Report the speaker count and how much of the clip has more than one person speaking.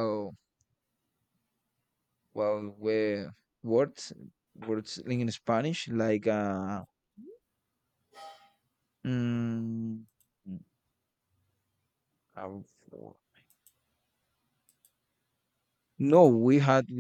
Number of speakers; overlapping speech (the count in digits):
1, no overlap